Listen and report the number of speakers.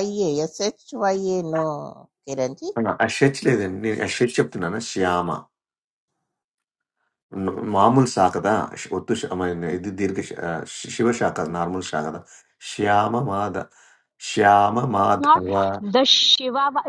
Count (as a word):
three